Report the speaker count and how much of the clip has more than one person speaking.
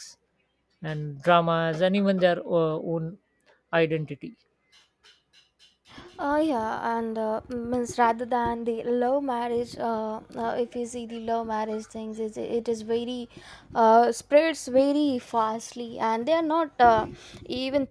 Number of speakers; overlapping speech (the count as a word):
two, no overlap